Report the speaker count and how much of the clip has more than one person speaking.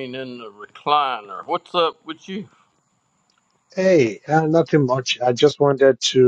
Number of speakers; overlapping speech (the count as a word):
two, no overlap